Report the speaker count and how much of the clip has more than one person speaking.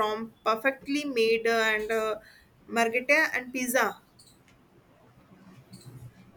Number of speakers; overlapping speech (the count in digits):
1, no overlap